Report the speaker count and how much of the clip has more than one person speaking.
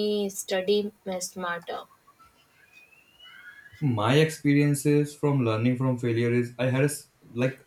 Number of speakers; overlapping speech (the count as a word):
two, no overlap